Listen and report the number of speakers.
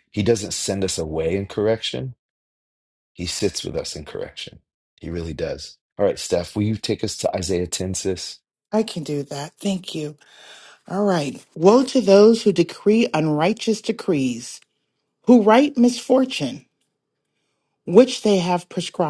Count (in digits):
2